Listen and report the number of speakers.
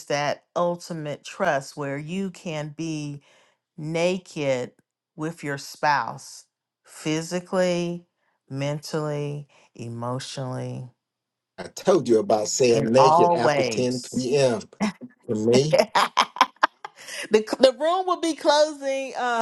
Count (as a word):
two